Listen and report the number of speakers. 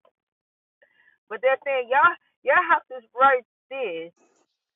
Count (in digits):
1